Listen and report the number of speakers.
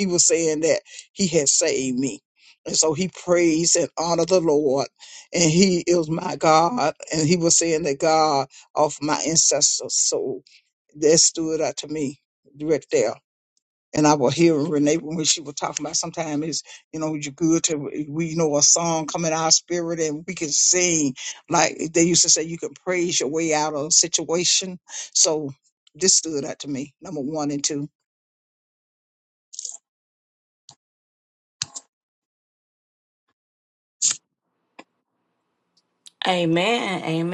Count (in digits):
2